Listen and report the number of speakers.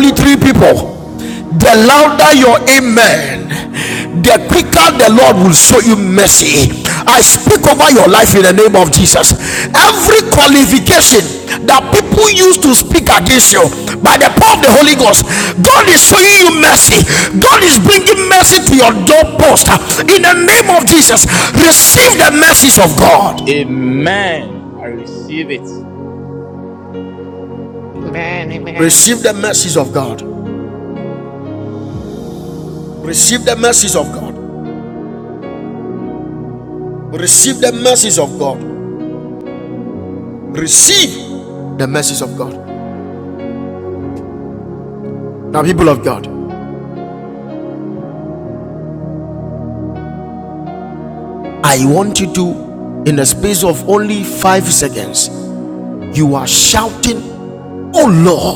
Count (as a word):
three